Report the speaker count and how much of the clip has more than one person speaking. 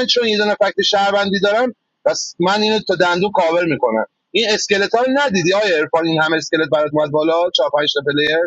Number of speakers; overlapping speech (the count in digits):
1, no overlap